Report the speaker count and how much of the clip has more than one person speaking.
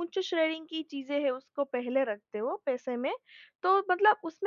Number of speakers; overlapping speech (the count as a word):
one, no overlap